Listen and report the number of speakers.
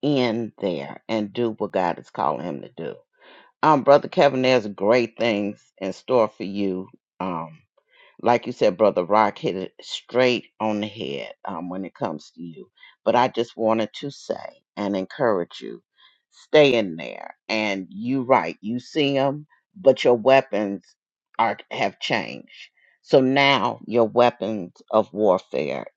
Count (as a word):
one